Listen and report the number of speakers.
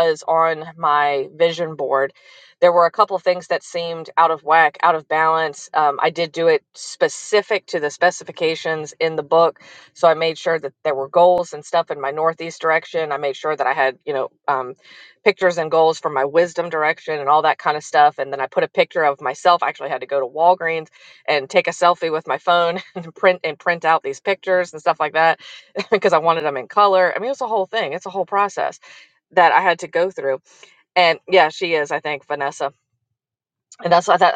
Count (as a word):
one